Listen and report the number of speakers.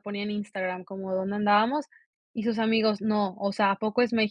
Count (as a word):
one